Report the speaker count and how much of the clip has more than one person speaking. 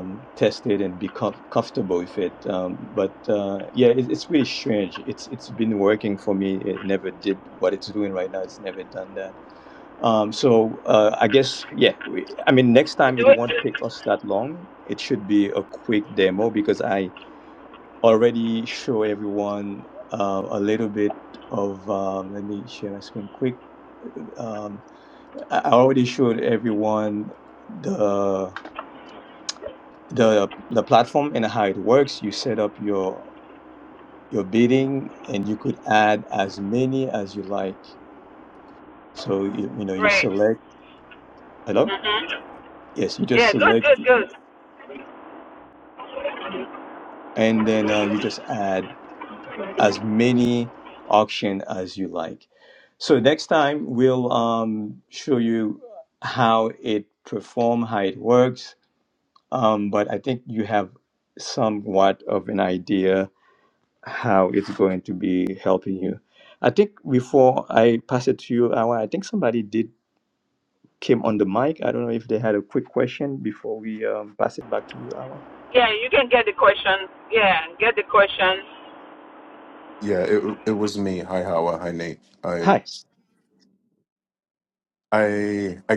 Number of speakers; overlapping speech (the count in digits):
3, about 2%